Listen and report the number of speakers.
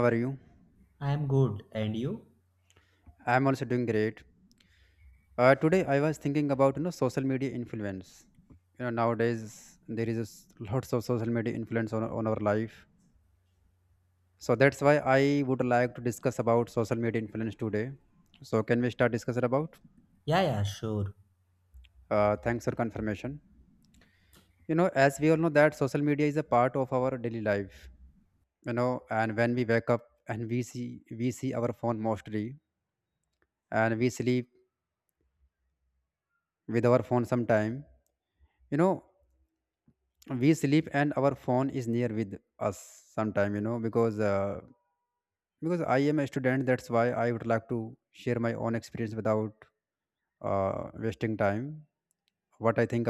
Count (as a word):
two